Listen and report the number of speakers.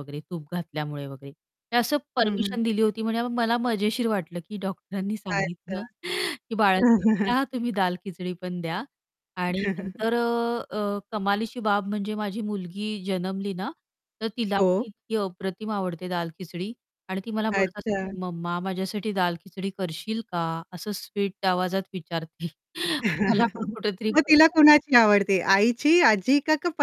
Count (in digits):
2